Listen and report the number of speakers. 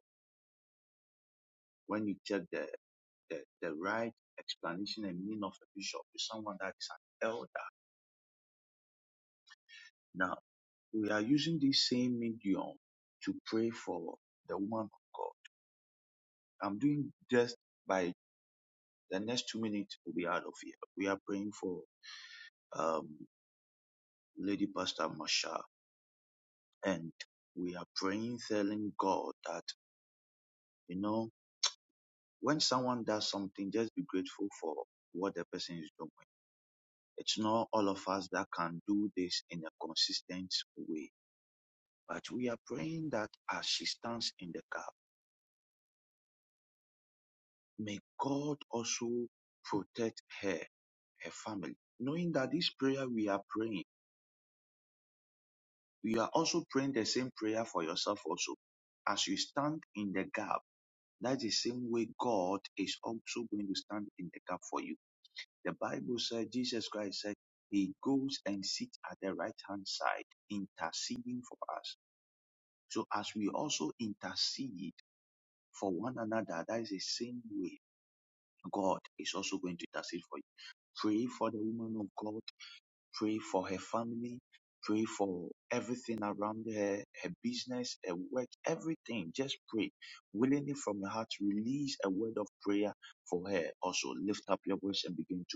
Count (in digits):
1